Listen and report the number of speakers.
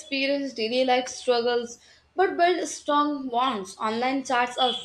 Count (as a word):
one